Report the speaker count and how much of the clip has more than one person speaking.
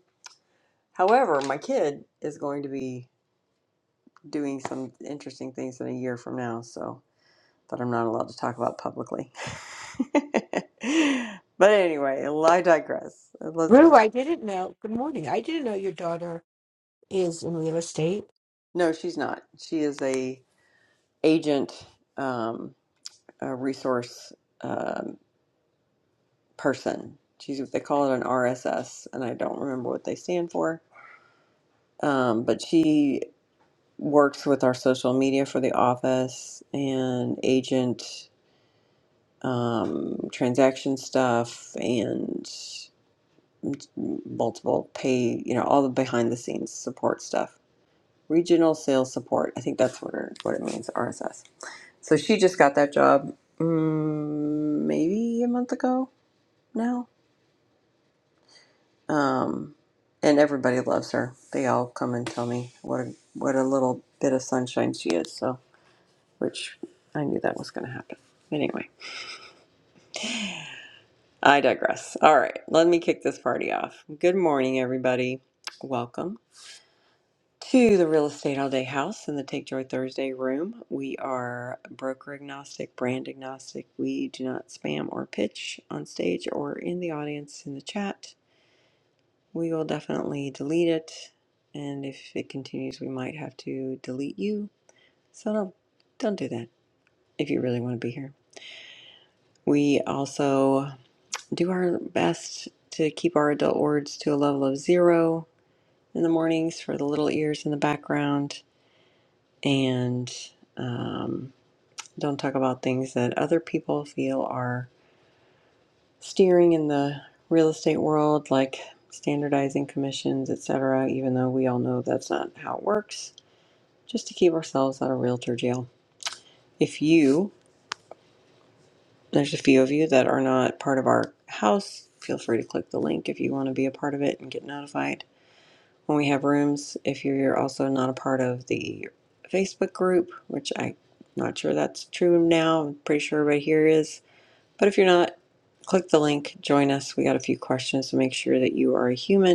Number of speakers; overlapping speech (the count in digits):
2, under 1%